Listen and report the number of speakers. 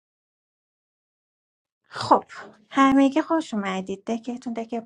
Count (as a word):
one